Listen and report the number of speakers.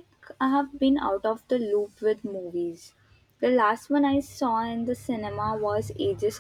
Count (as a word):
one